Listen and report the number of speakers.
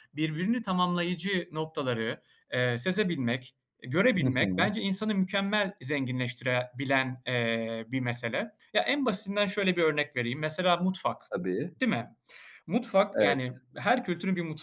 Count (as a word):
two